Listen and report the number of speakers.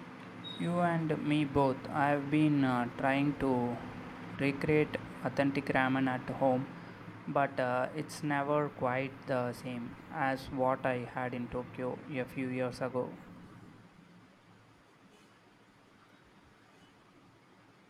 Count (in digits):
1